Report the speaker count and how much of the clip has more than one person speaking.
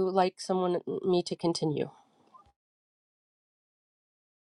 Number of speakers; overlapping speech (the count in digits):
1, no overlap